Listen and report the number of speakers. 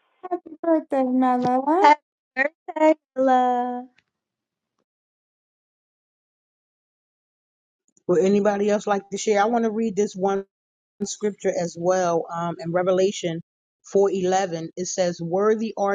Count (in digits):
3